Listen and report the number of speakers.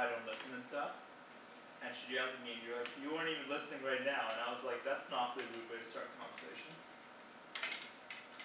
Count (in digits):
1